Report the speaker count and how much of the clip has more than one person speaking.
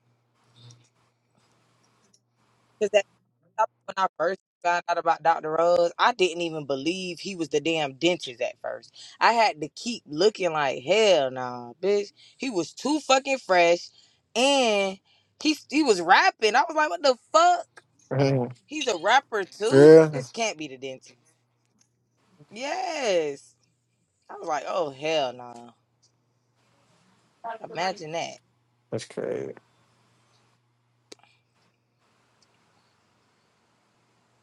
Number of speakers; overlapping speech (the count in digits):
2, about 2%